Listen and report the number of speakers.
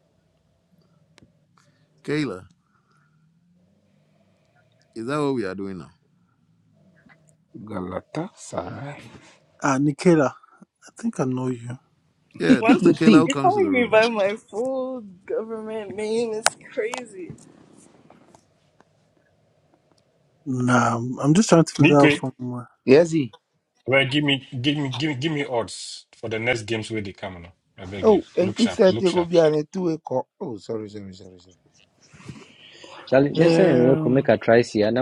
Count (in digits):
6